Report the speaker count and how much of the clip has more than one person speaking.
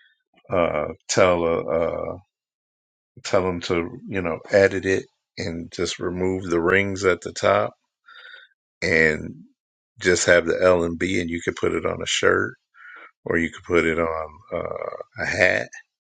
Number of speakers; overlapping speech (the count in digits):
1, no overlap